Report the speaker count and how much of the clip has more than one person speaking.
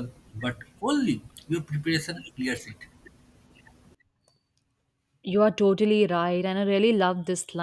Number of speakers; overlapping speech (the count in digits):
2, no overlap